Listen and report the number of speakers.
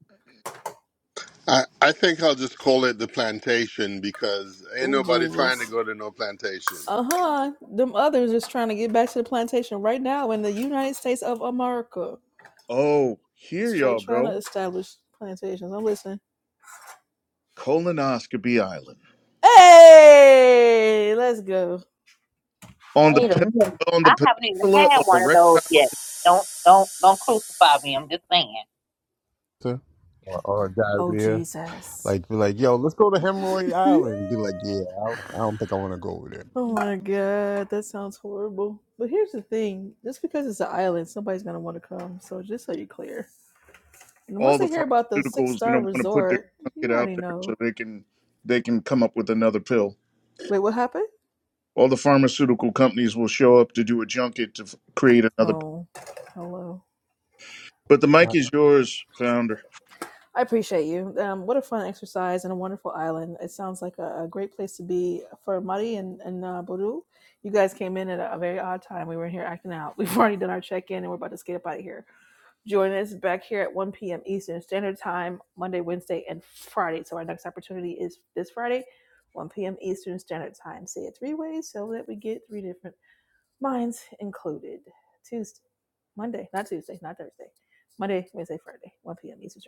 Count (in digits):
5